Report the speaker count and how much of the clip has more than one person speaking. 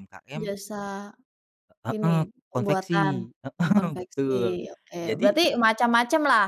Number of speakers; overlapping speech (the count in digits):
2, about 33%